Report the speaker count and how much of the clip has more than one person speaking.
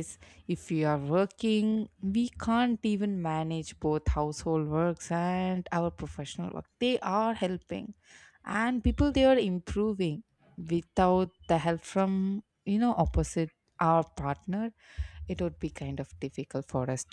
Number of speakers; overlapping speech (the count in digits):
1, no overlap